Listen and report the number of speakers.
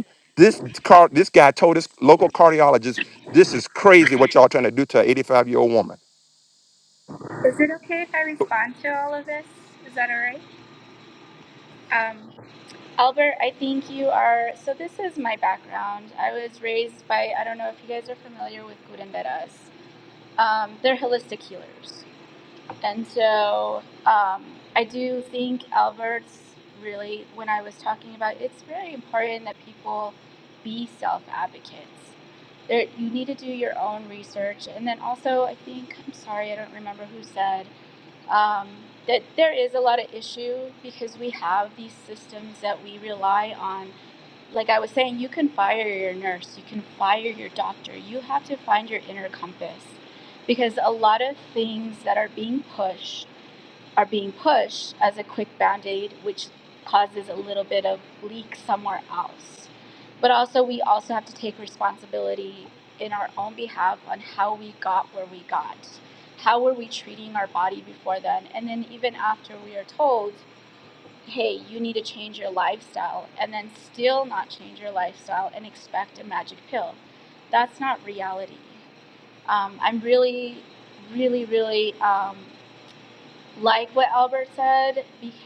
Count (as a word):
two